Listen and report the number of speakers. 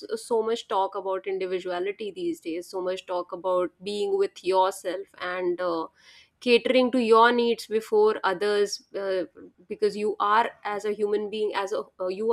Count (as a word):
one